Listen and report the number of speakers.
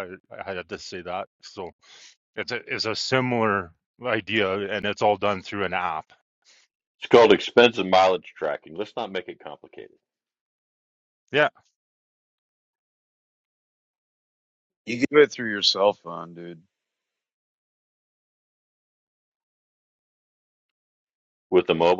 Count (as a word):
three